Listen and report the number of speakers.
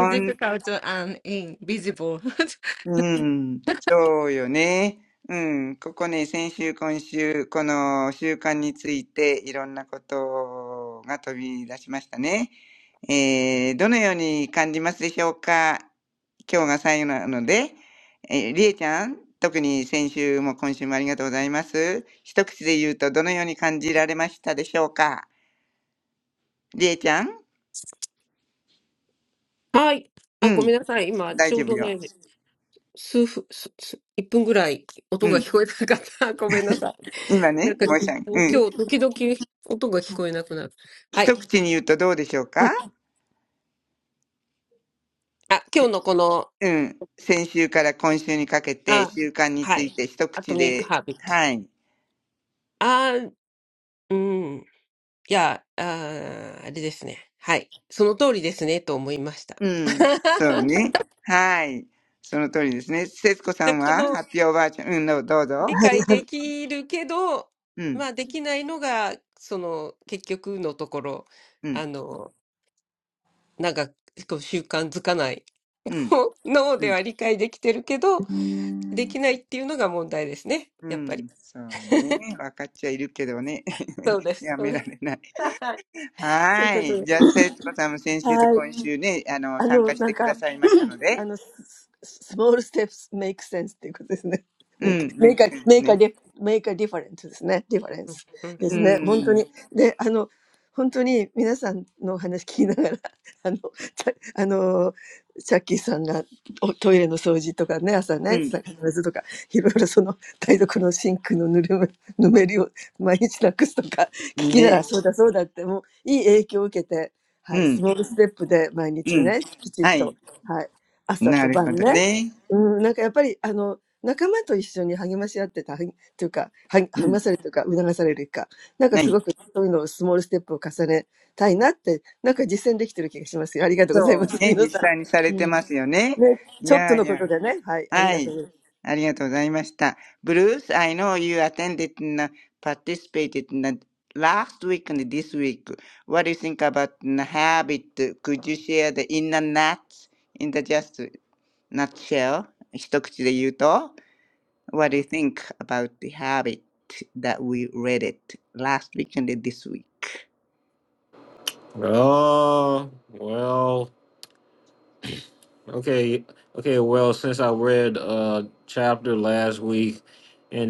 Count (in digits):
5